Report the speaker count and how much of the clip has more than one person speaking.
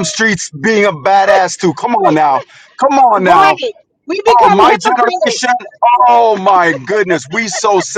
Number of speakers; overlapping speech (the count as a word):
two, about 16%